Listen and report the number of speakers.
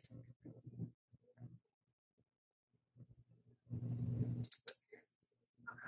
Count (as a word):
zero